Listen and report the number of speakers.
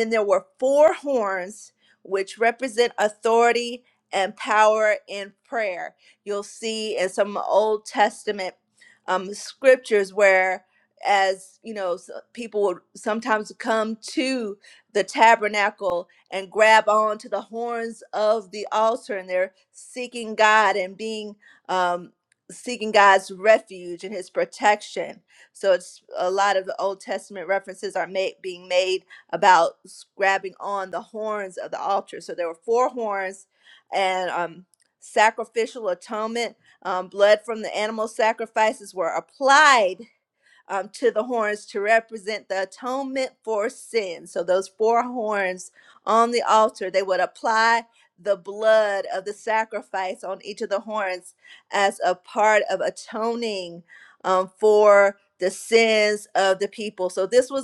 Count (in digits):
1